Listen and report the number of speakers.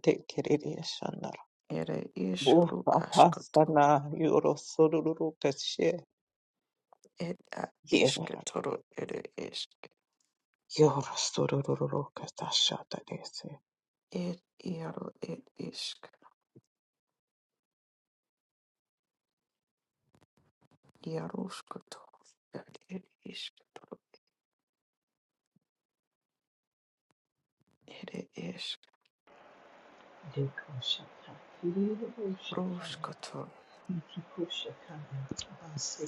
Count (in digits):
3